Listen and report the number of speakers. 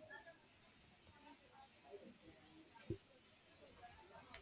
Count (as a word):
zero